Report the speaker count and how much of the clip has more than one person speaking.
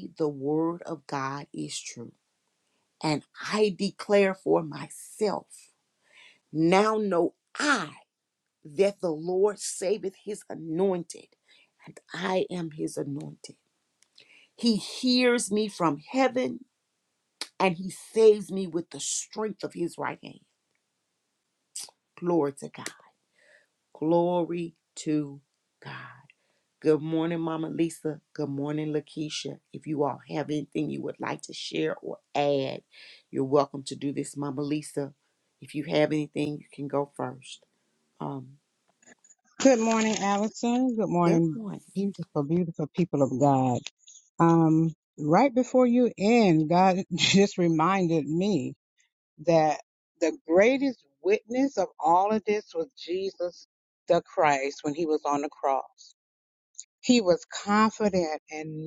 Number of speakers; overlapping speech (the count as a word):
two, about 1%